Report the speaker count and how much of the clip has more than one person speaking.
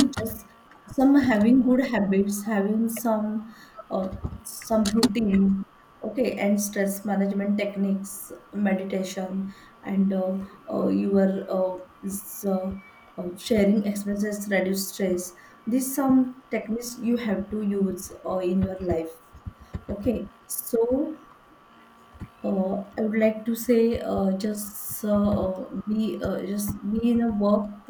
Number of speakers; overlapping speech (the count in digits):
1, no overlap